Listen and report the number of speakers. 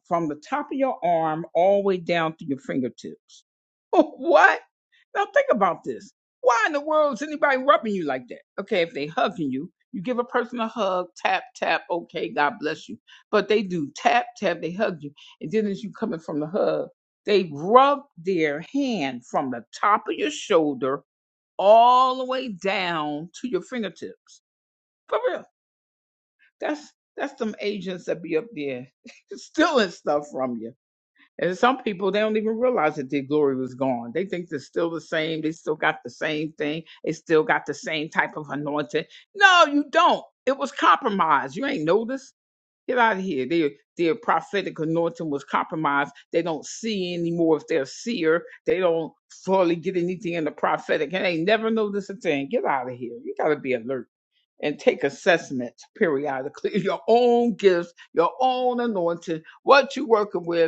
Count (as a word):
one